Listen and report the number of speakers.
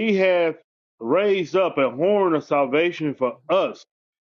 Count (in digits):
1